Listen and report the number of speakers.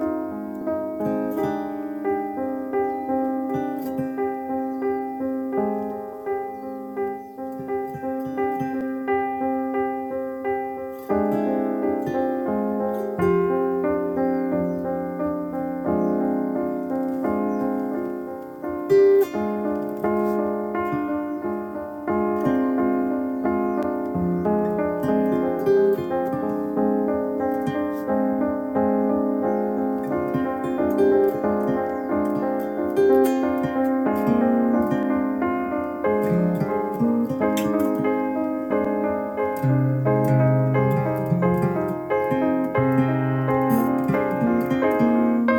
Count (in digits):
0